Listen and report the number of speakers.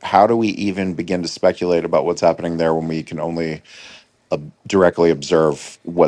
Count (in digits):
1